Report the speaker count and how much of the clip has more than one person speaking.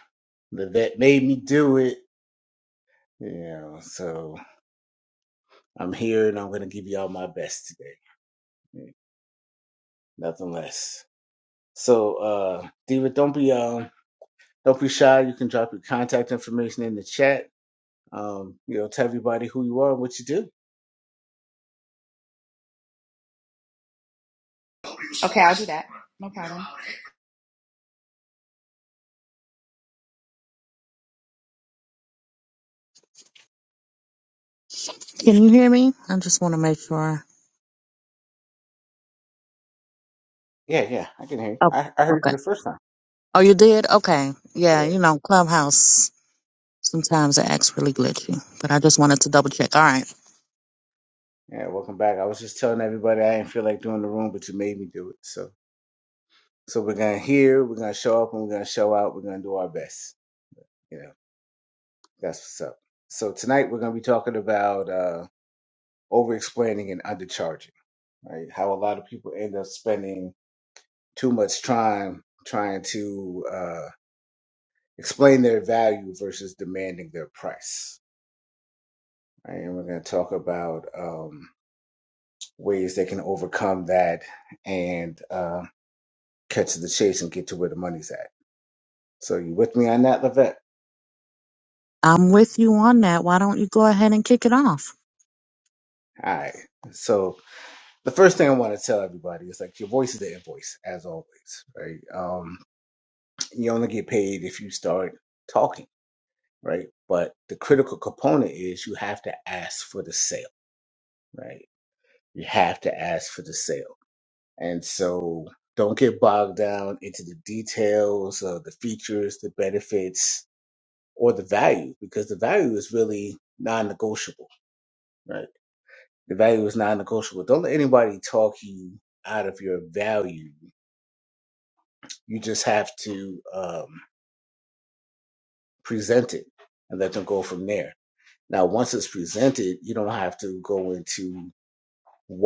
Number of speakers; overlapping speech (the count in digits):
3, under 1%